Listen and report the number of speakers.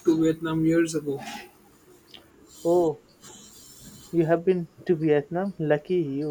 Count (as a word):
two